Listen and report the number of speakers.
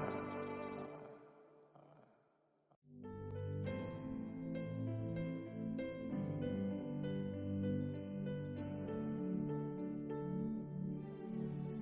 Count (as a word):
zero